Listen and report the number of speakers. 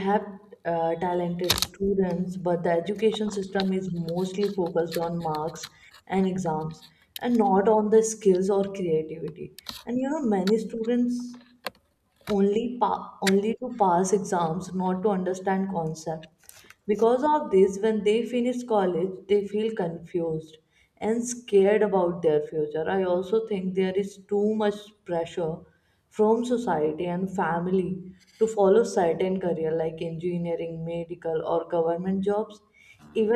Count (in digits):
1